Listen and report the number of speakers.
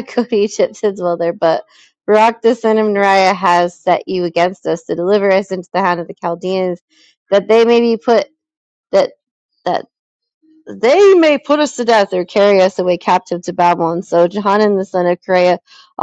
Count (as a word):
one